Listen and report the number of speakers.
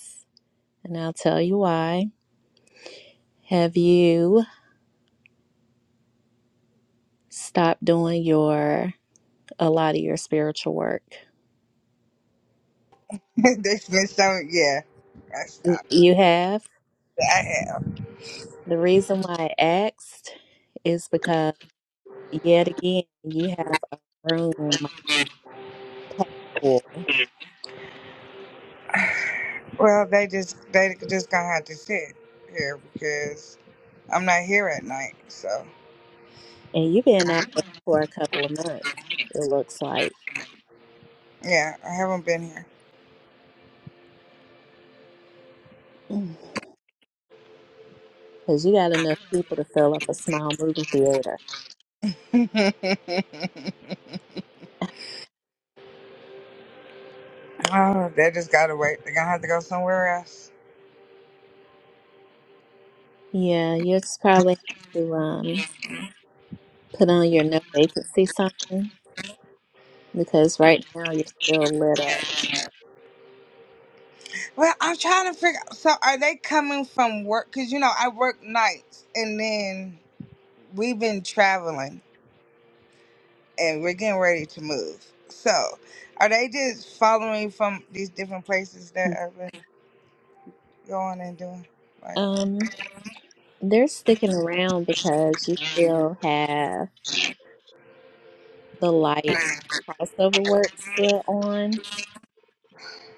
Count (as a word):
two